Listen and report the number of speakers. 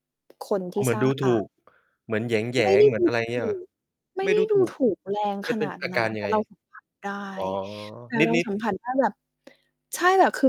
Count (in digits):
2